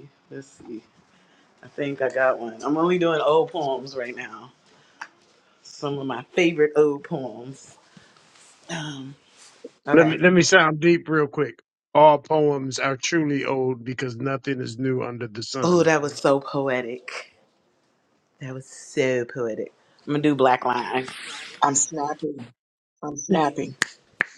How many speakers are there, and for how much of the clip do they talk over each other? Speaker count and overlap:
3, about 2%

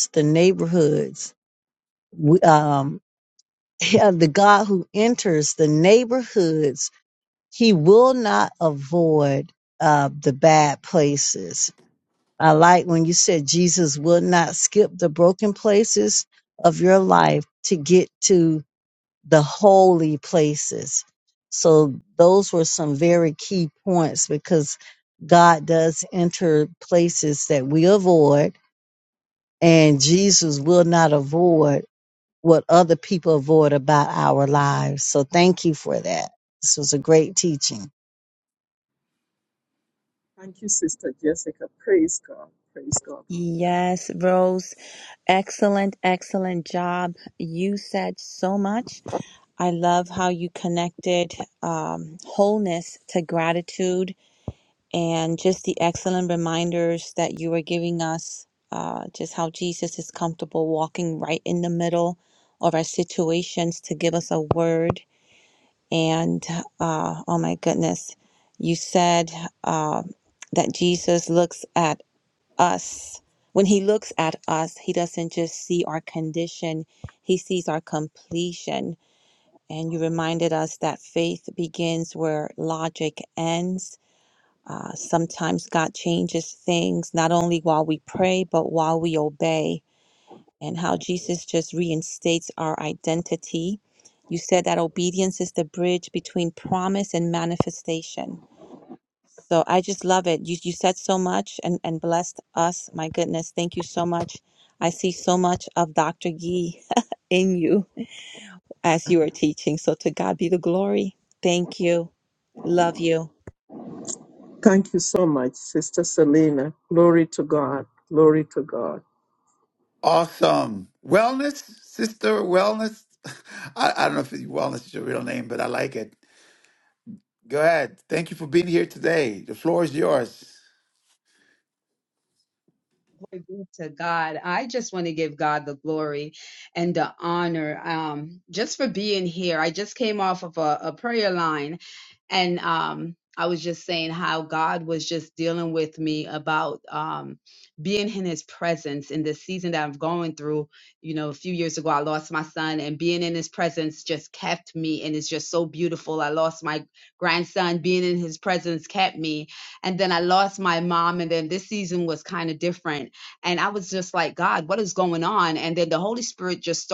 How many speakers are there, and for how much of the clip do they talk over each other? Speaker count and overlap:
5, no overlap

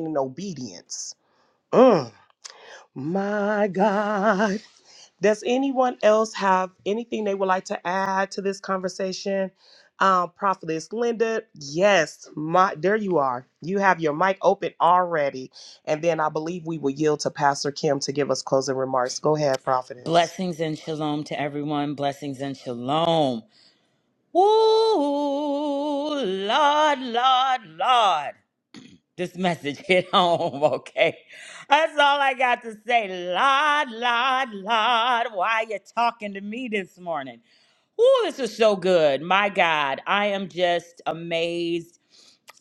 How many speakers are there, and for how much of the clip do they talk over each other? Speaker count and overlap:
2, no overlap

